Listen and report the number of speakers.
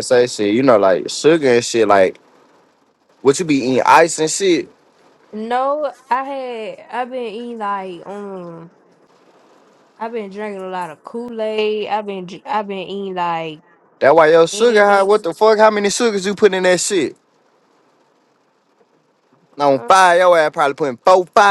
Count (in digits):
2